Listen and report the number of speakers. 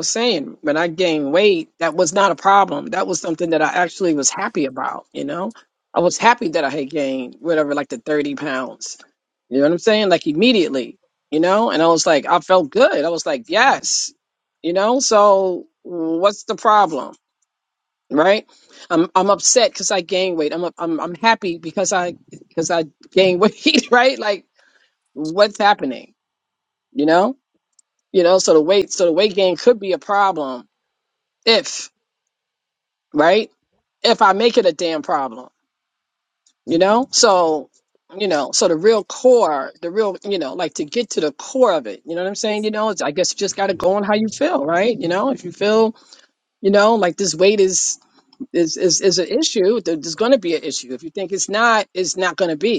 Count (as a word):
one